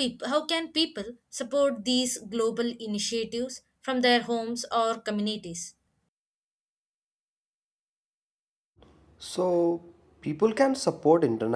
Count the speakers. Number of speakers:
2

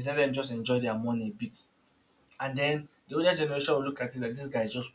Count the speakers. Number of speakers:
1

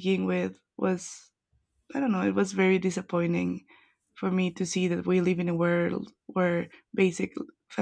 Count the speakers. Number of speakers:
1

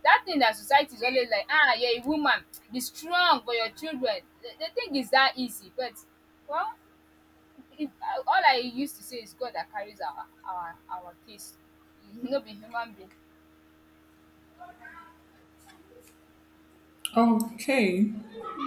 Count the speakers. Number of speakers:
2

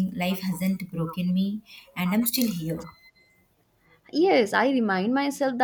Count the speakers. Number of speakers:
2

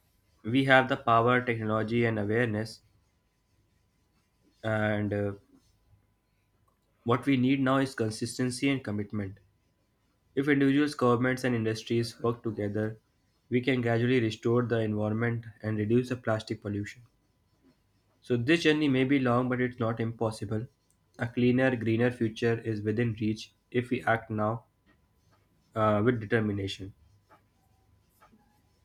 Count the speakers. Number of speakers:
1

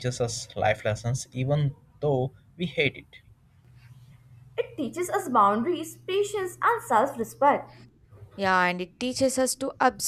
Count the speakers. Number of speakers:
3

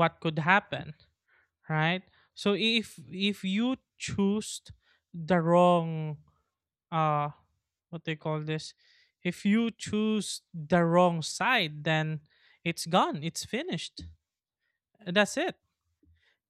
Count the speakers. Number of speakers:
1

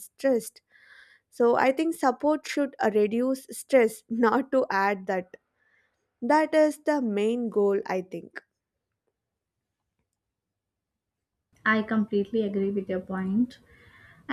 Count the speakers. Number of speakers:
2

